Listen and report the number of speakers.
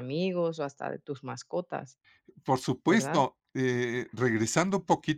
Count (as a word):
two